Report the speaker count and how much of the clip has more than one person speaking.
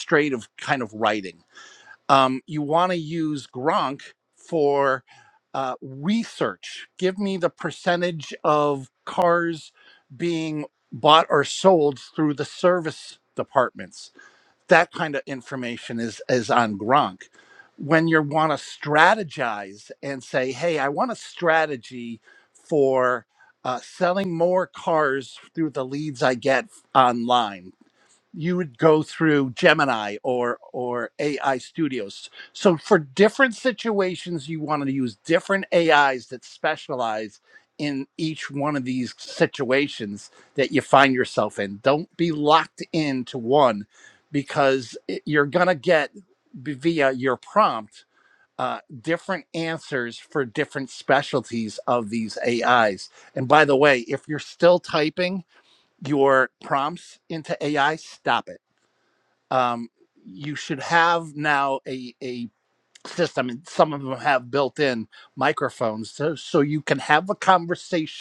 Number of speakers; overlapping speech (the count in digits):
1, no overlap